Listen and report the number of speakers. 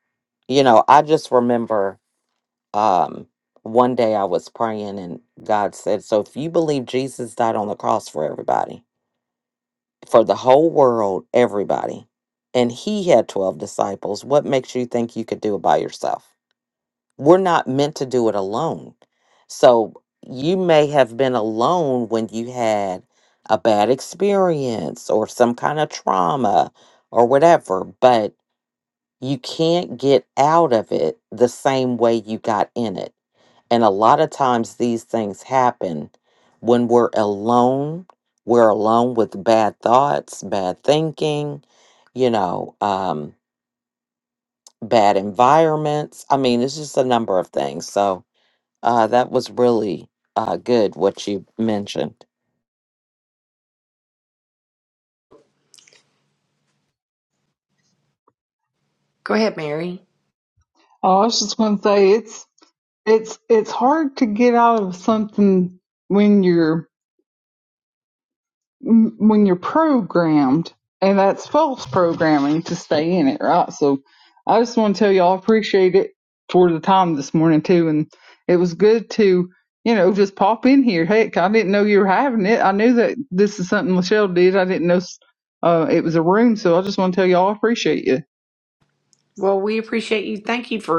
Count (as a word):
three